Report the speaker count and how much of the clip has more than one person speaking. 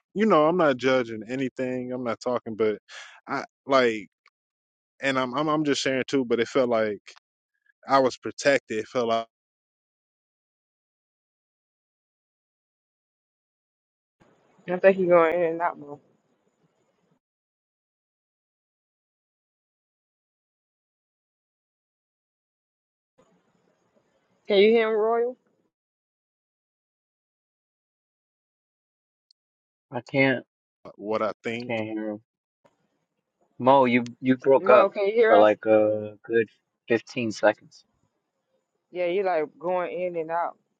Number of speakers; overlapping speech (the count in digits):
3, about 1%